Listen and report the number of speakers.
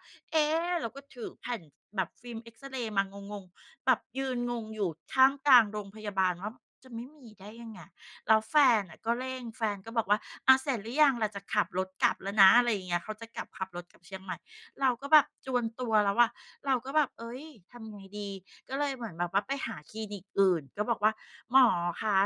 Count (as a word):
one